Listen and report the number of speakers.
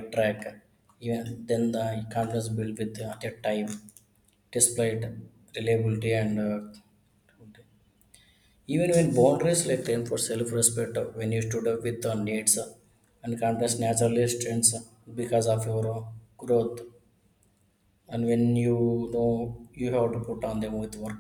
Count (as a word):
one